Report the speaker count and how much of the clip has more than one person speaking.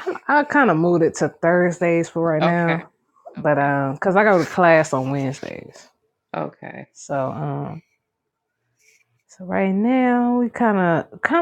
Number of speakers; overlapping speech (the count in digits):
2, about 7%